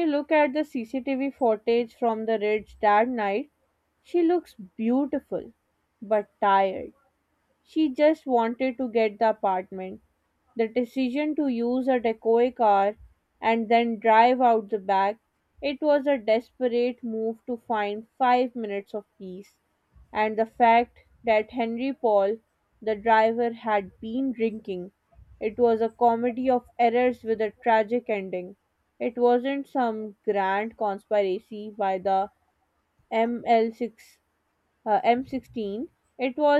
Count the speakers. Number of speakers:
one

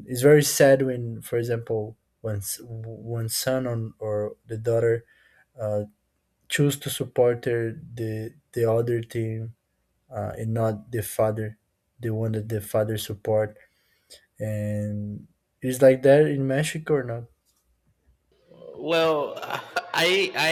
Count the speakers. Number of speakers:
two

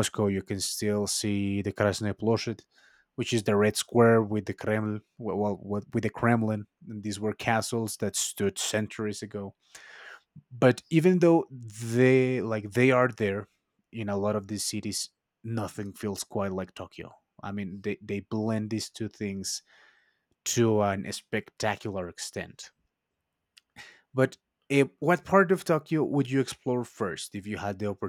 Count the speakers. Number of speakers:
one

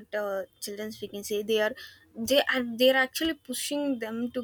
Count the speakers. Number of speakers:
one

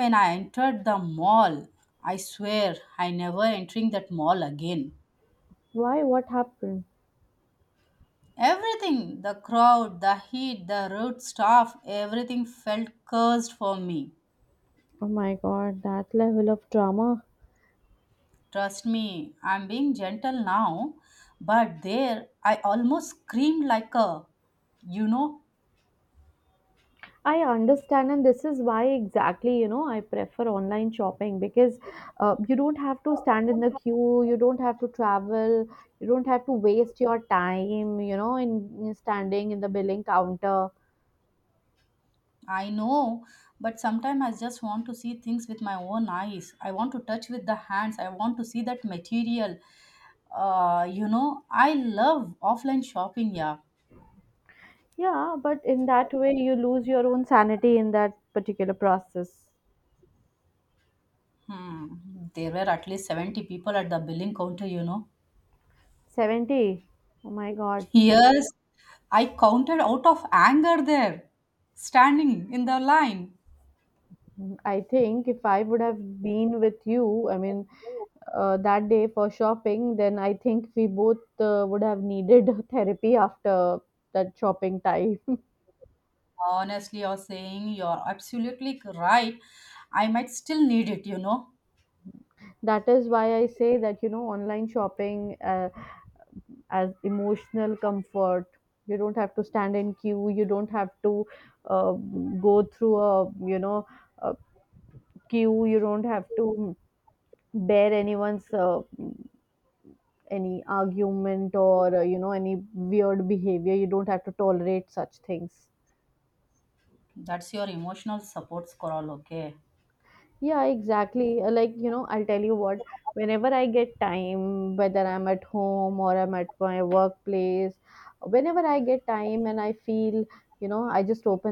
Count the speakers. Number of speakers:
two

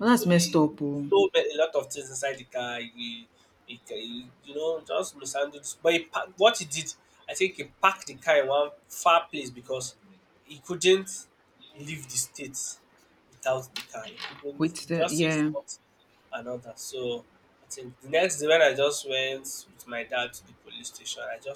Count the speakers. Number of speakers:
two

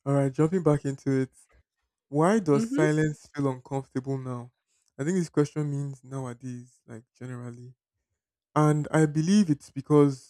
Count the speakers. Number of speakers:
one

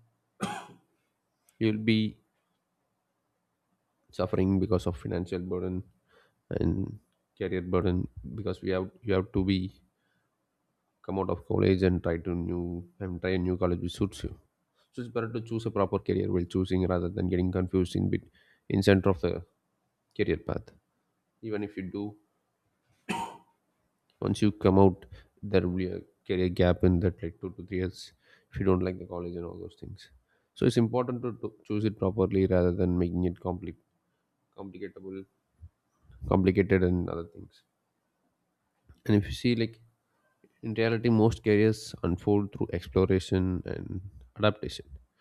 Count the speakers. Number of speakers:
one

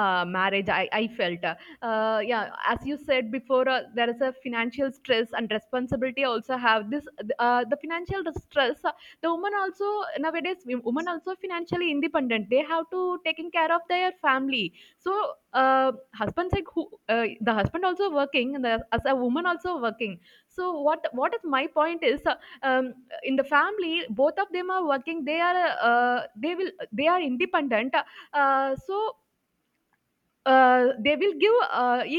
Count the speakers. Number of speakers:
one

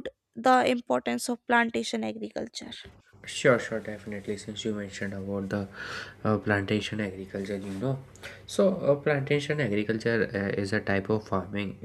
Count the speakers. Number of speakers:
two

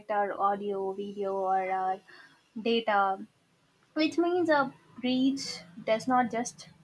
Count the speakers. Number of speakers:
one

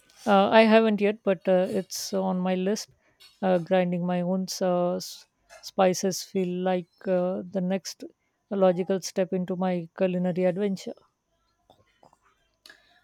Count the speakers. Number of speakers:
one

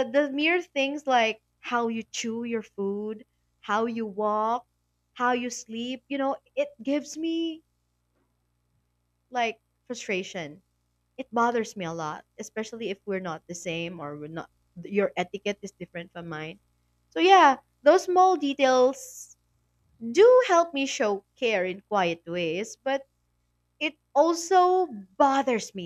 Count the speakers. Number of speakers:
one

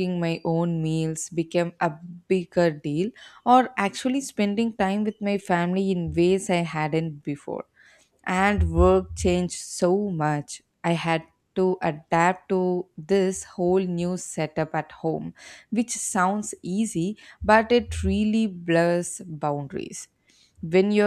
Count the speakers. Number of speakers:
one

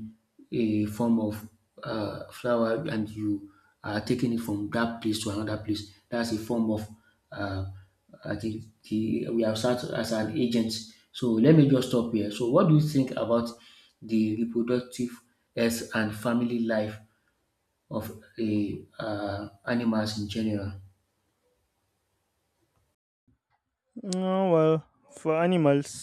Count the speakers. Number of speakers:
two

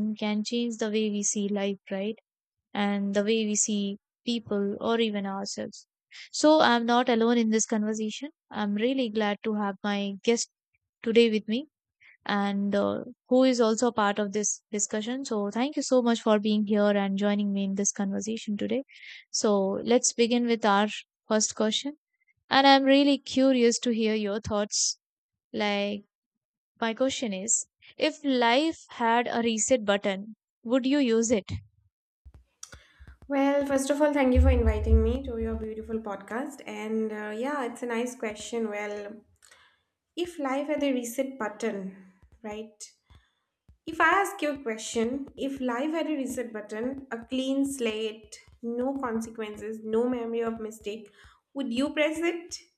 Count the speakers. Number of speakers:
two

